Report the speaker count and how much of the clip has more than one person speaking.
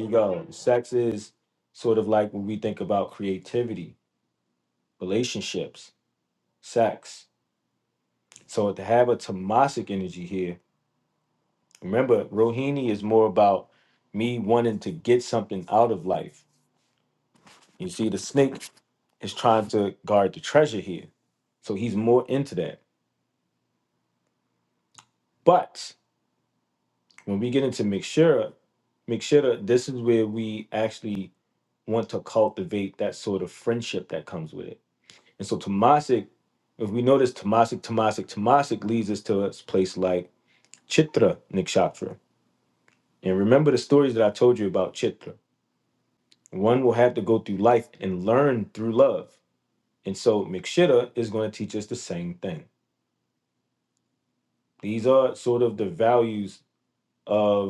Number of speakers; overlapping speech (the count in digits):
1, no overlap